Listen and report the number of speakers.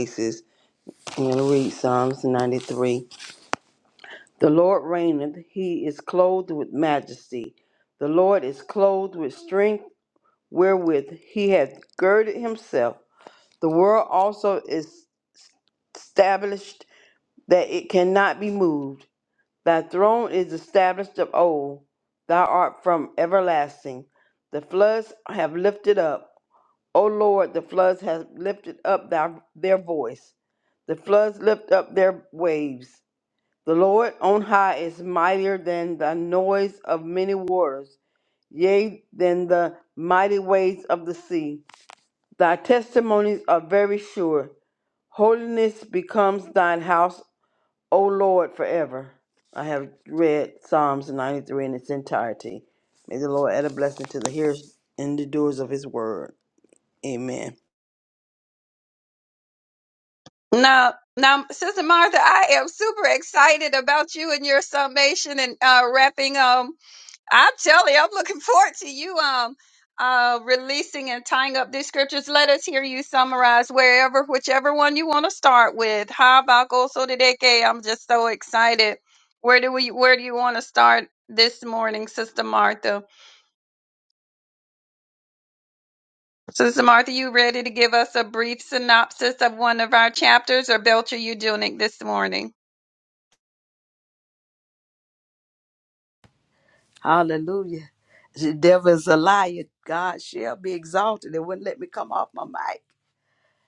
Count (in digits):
3